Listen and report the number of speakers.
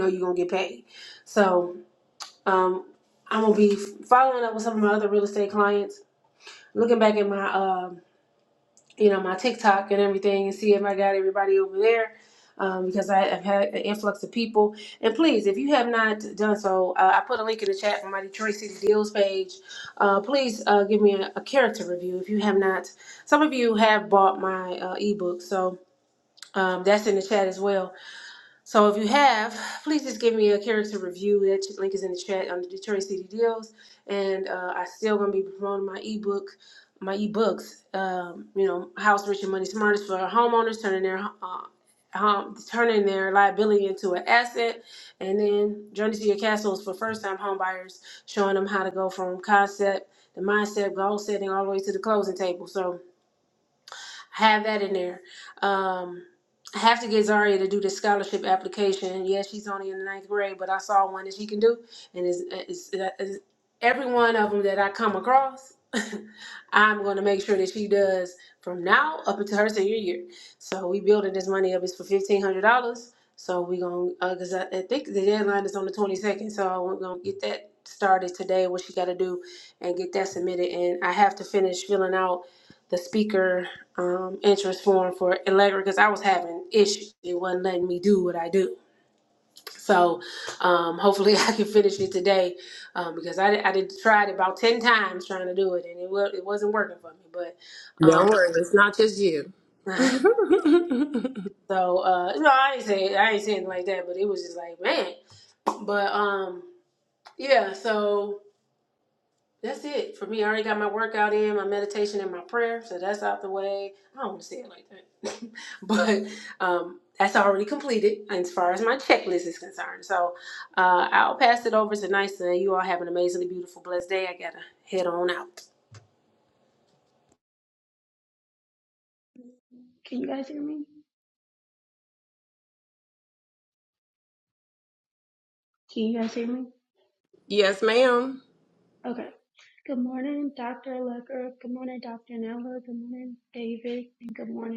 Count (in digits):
3